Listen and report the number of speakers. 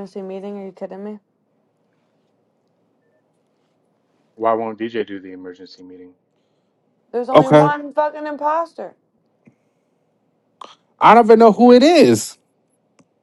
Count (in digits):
3